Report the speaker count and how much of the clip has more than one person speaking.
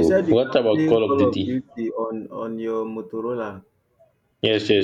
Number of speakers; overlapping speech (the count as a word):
two, about 32%